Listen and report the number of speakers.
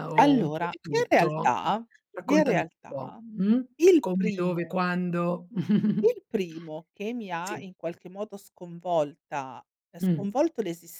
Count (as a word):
two